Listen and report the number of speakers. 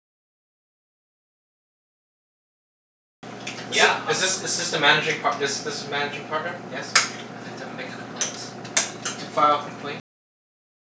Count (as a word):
two